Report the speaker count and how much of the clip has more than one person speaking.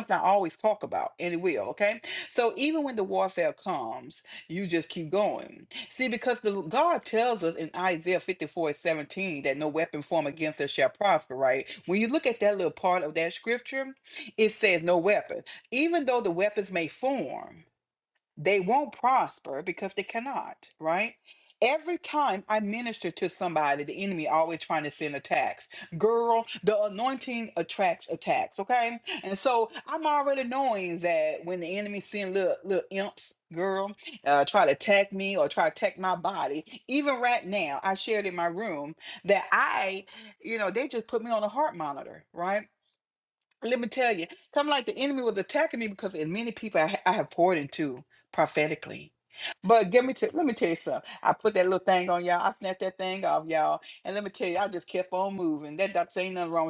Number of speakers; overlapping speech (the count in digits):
1, no overlap